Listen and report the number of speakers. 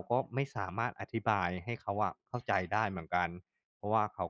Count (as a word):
one